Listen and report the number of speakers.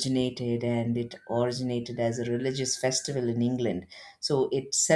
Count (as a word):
one